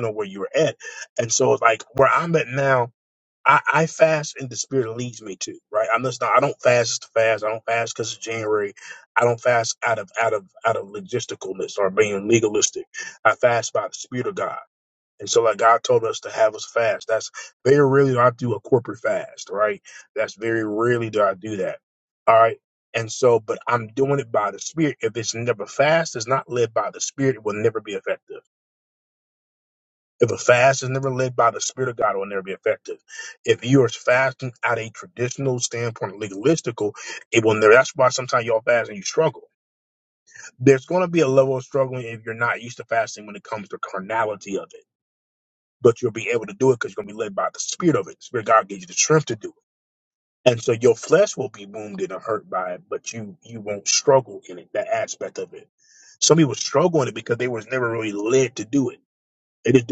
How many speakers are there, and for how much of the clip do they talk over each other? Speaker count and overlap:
one, no overlap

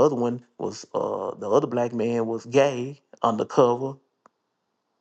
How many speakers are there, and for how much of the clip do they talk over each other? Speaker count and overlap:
one, no overlap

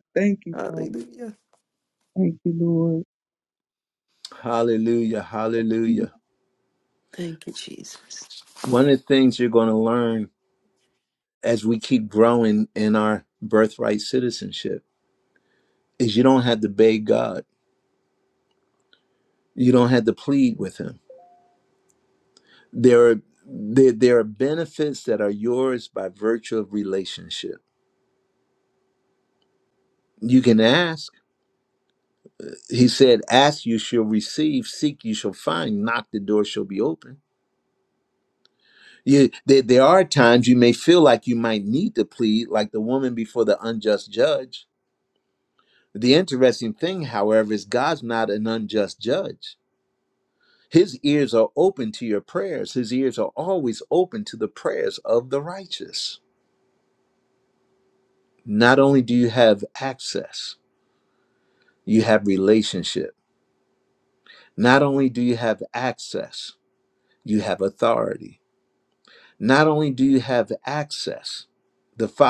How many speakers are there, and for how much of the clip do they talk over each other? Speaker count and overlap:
three, about 1%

